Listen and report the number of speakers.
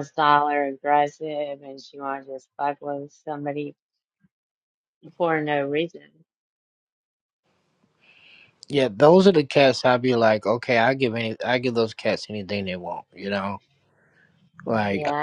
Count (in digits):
2